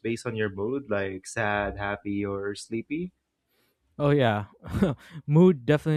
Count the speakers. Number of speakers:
two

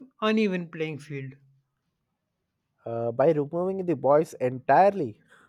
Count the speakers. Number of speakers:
two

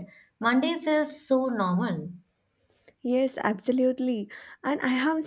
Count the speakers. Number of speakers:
two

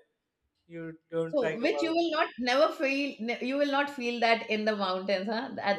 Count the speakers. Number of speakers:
two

